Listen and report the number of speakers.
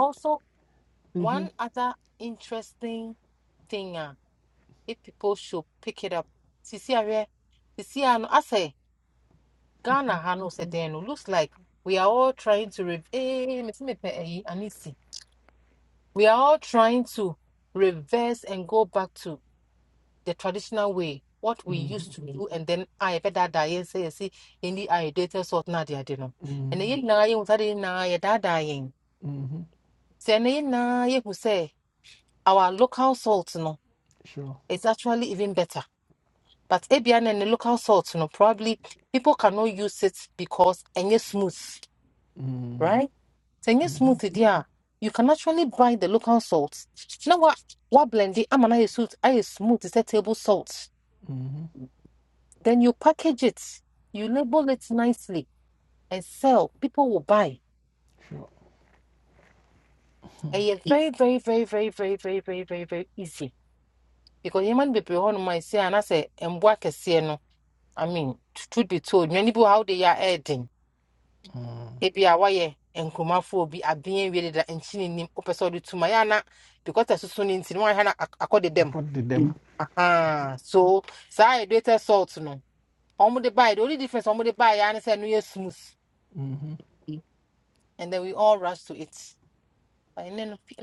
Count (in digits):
2